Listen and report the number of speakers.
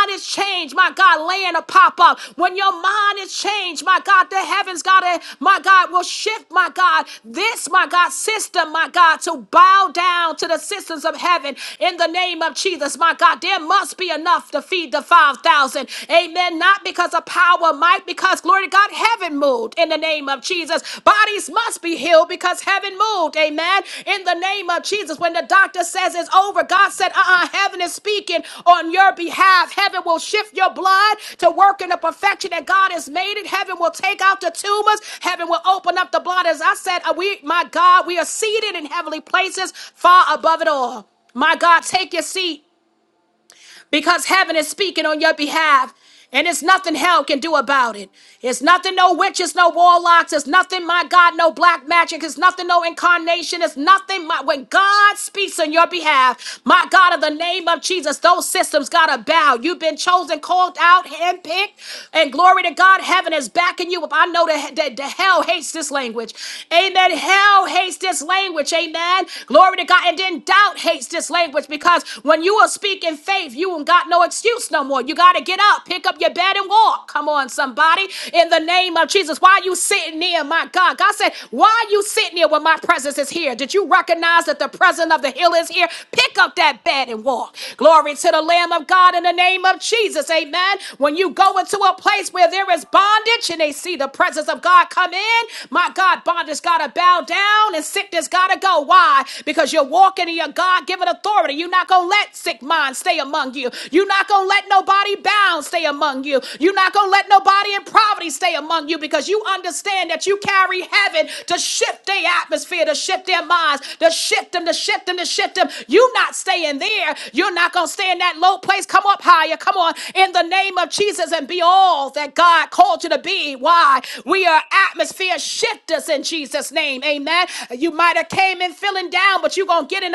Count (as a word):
one